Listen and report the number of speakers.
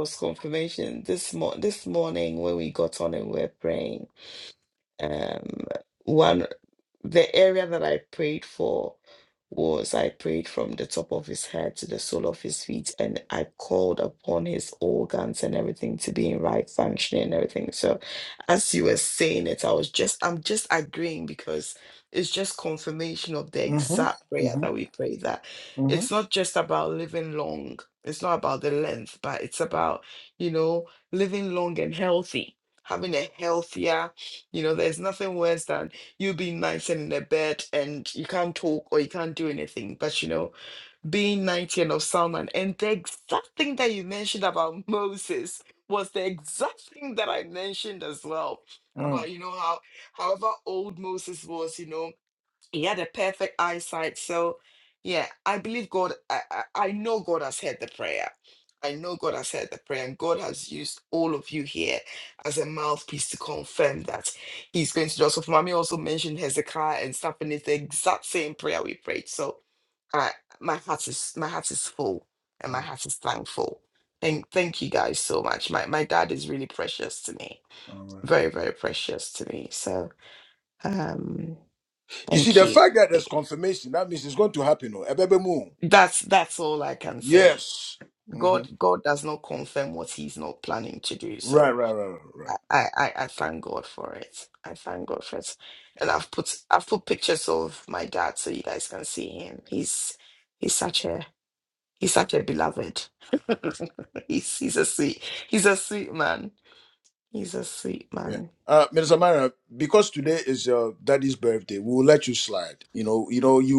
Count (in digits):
2